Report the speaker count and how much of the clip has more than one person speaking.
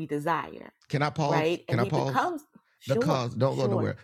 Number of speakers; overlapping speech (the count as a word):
two, about 40%